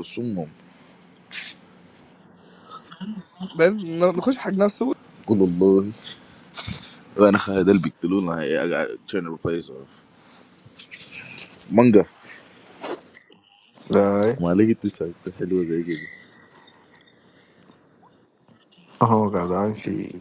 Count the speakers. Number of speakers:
3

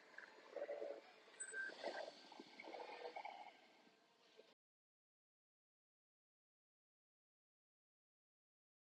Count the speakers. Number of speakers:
0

